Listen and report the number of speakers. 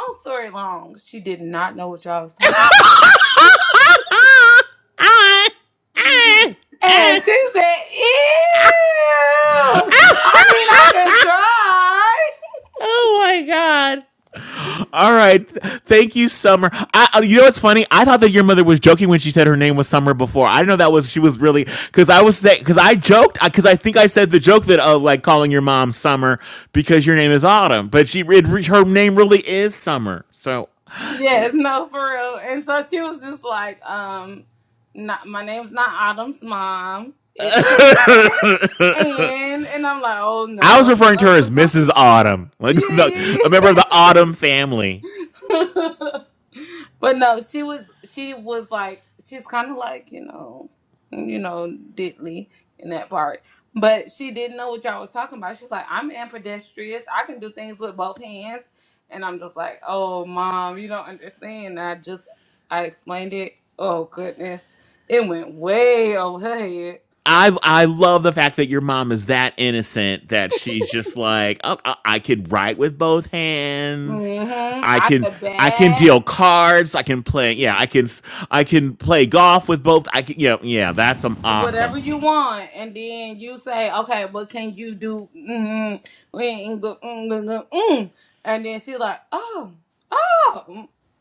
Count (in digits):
2